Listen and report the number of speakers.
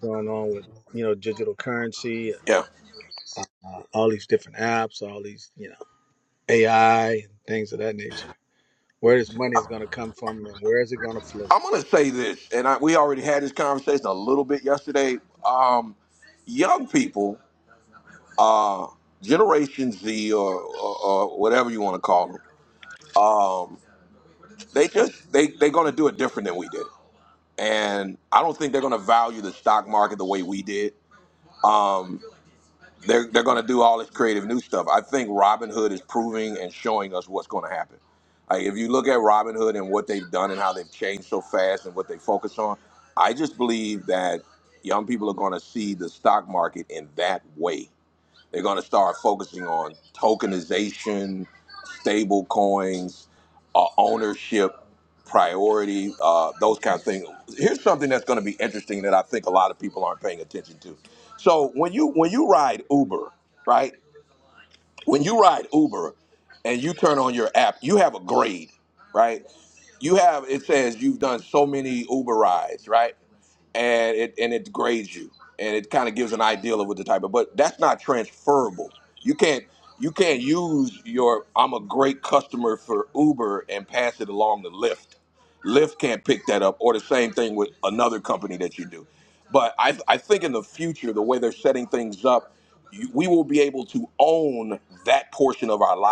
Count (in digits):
2